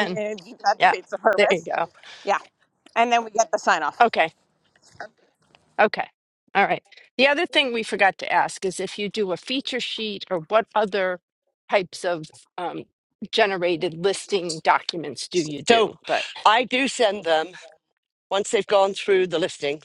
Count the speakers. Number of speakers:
3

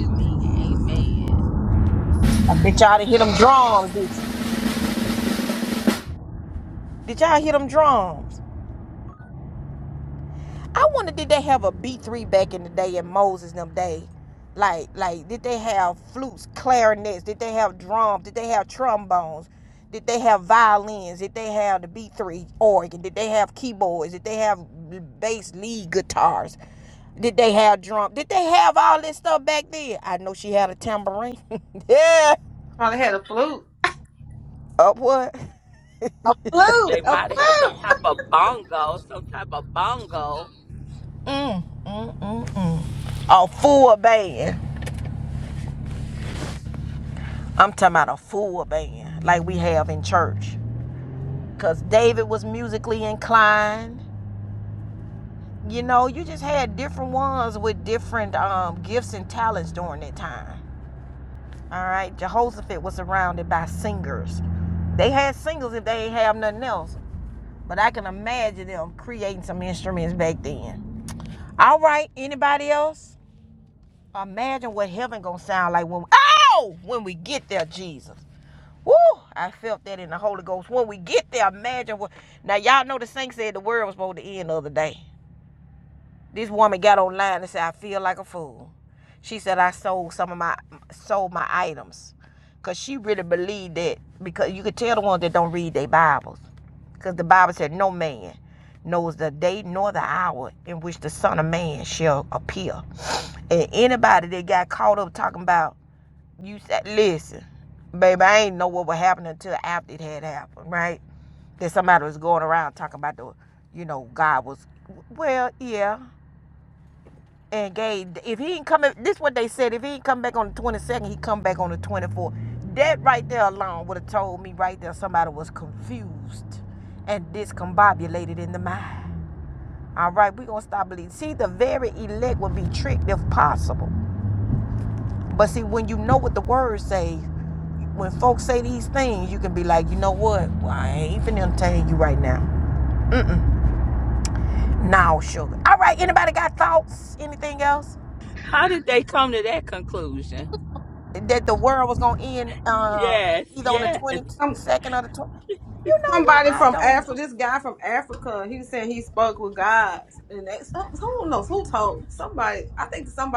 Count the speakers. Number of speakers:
3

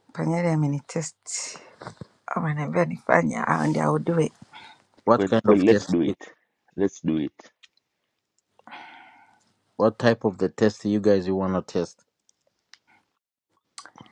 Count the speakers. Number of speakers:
3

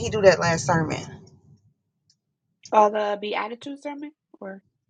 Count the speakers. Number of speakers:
2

